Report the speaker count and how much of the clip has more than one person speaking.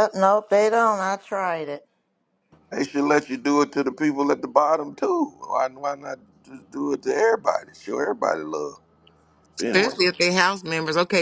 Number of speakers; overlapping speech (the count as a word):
three, about 2%